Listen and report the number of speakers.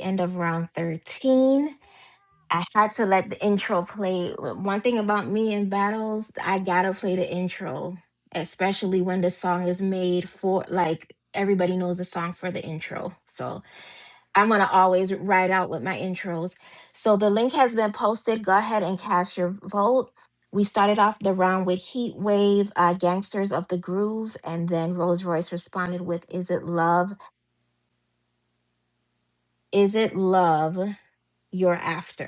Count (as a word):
one